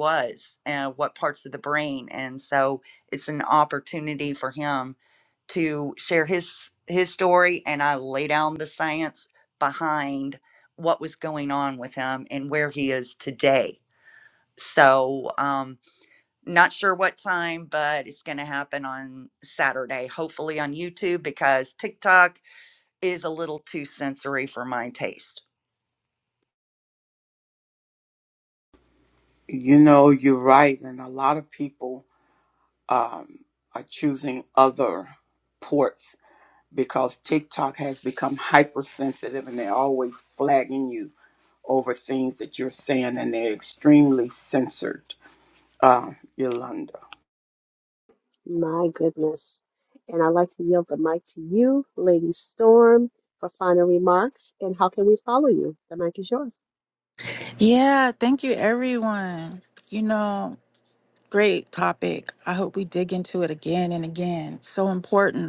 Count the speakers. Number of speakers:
4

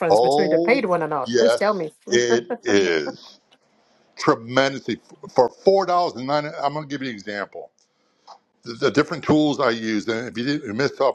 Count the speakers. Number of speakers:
2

